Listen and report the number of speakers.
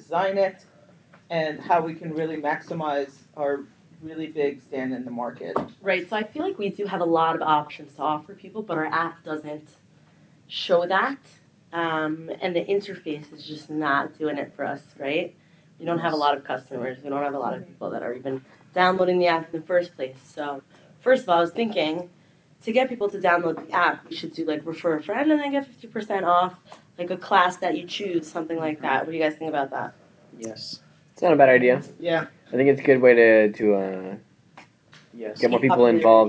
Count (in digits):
4